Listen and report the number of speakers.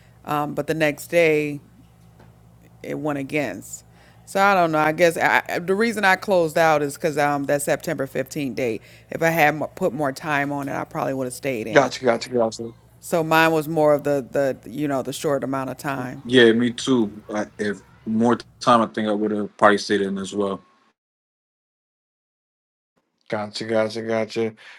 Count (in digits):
3